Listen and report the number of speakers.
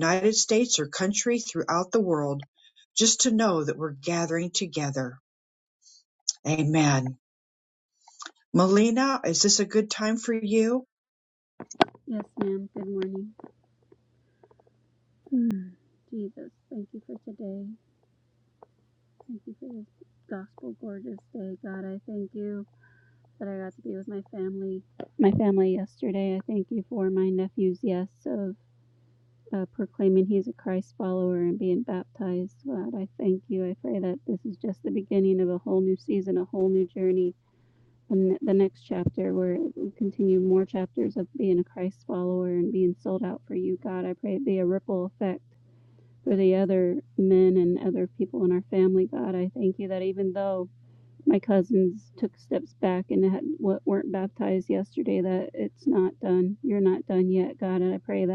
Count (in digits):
2